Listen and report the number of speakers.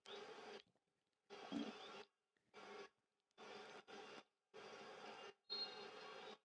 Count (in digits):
0